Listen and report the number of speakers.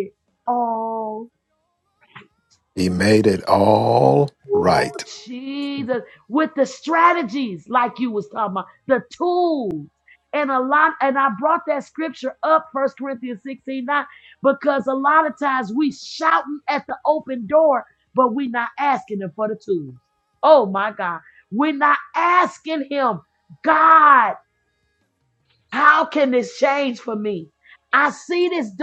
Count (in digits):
2